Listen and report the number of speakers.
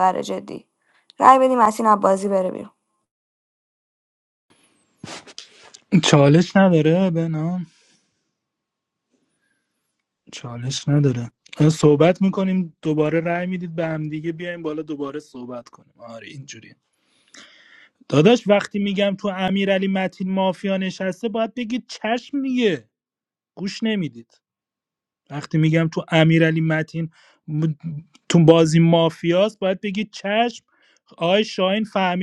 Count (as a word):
two